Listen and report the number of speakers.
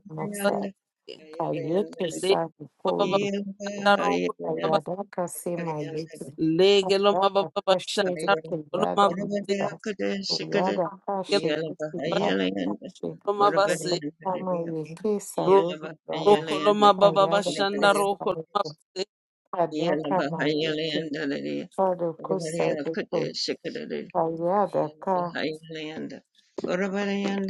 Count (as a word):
three